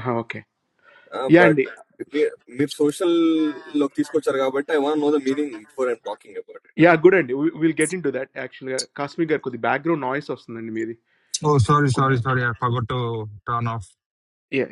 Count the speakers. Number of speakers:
3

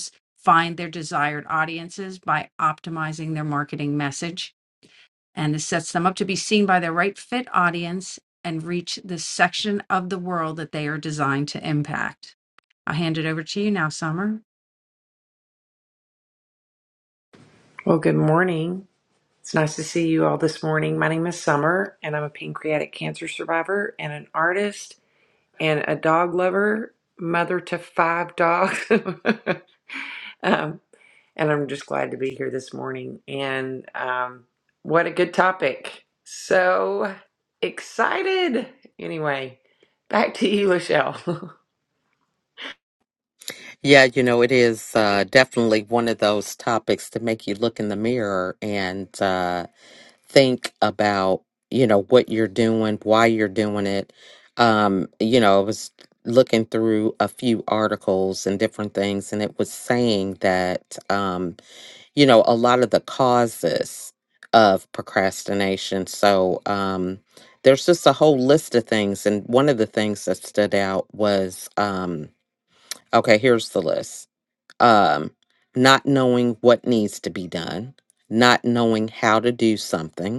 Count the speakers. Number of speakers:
3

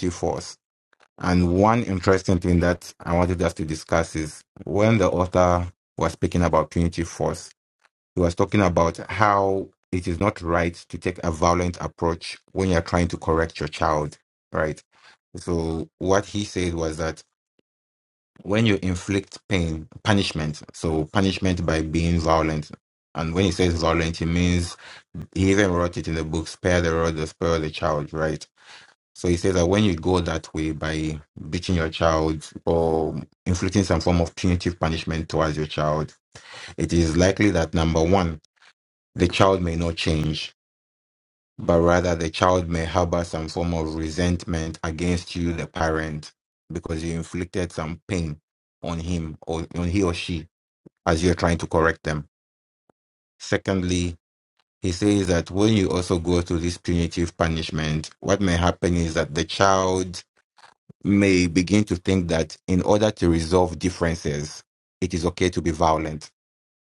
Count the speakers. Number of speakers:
1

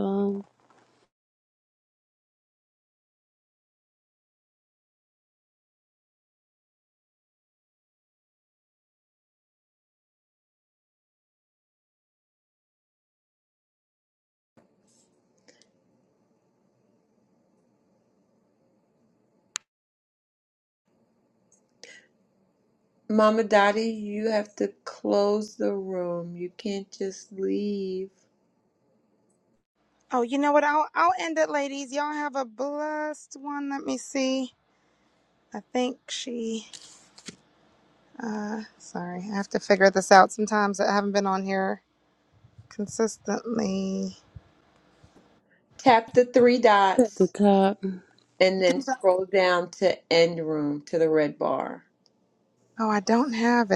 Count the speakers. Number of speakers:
3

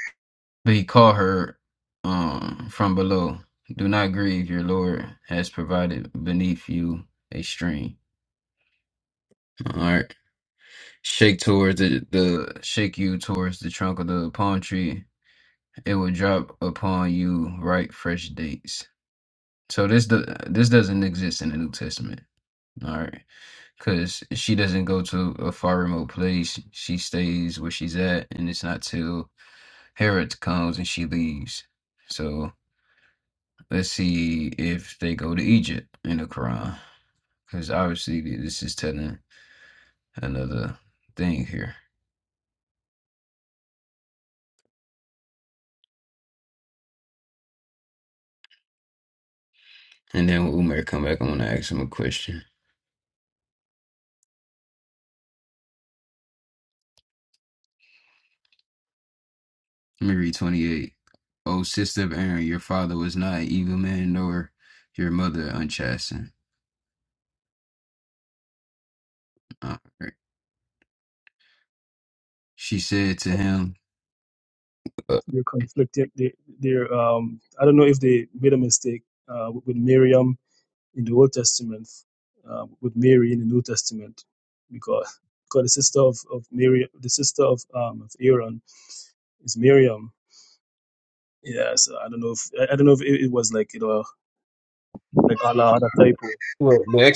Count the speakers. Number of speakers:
2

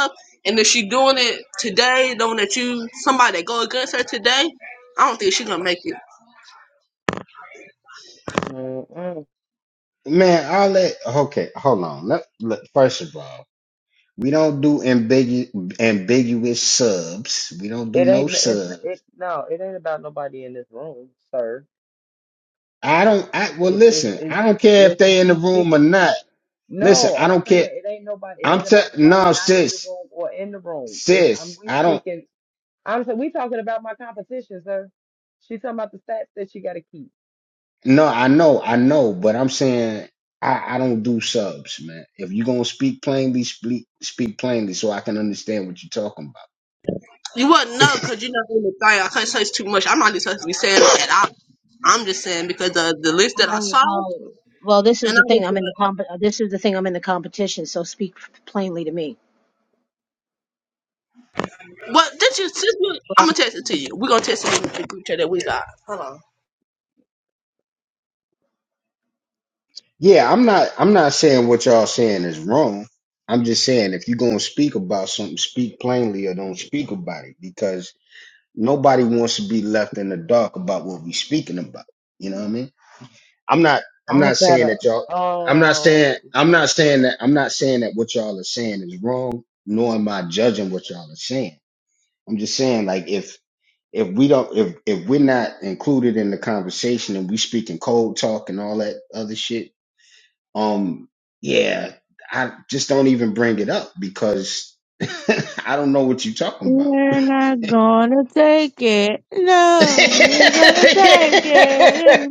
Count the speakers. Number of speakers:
5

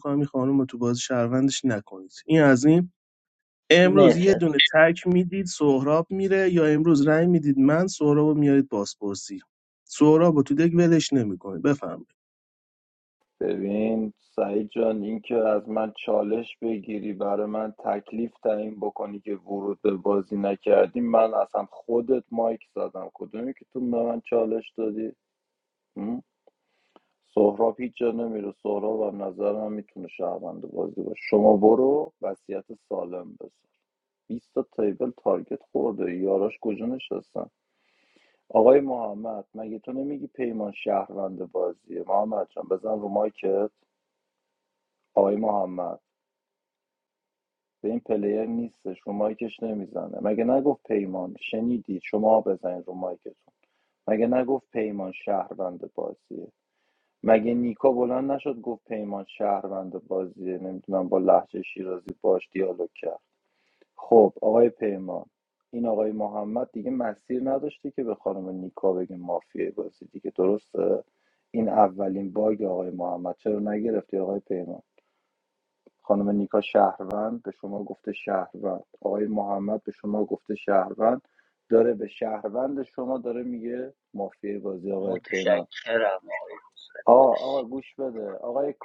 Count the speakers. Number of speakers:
3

